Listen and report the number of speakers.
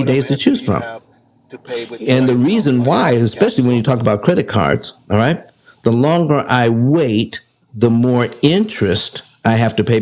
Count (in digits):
2